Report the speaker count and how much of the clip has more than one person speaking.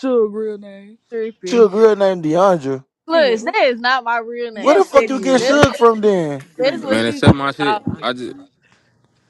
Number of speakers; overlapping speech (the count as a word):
four, about 28%